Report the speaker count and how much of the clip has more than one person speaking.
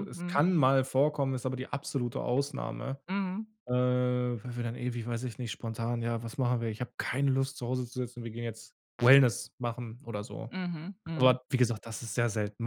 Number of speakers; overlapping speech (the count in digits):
2, about 5%